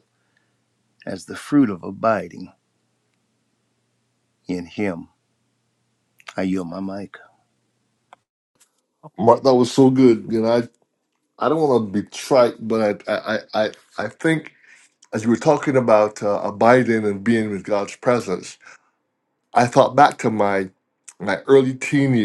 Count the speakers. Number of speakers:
2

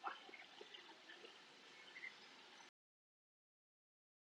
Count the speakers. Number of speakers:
0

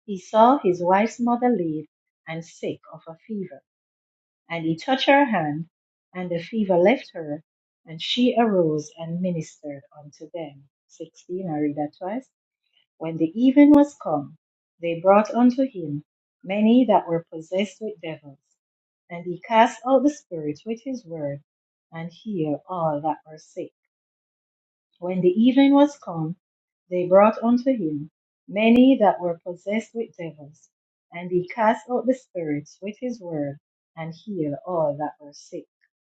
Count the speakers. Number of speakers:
1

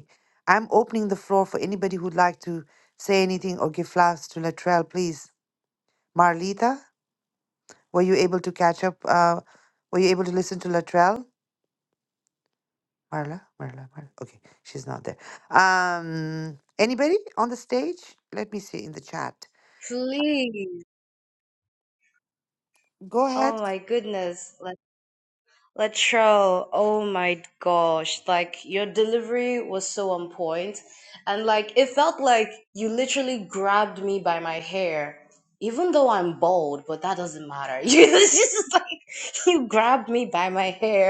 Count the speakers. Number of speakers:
2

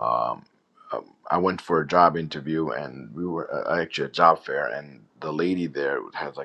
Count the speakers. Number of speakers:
1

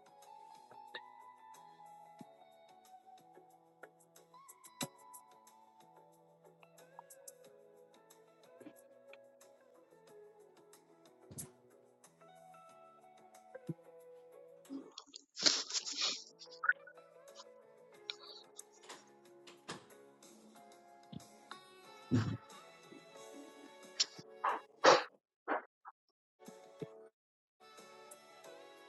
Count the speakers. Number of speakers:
0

